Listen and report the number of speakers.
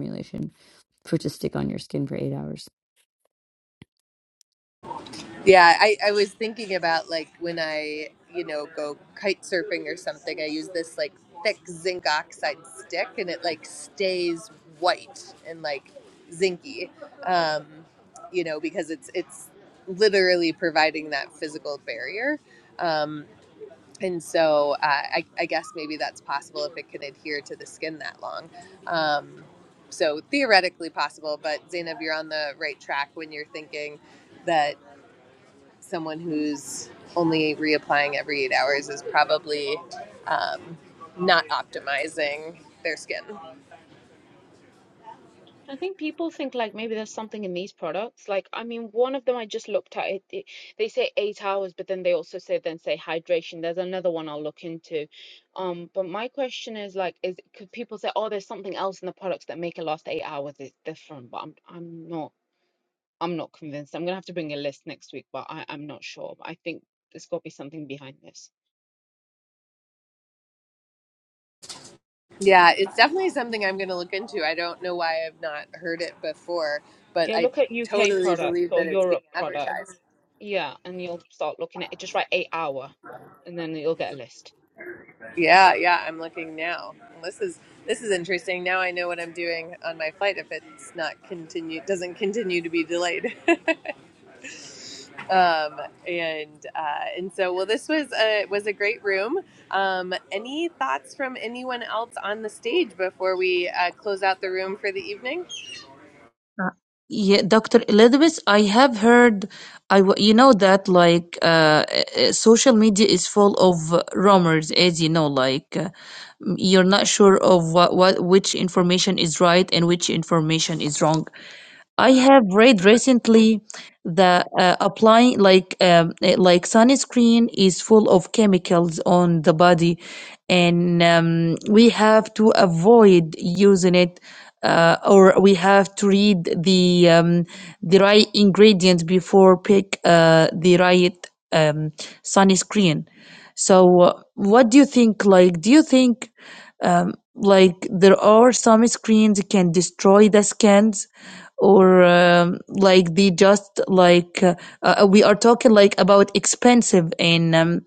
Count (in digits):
4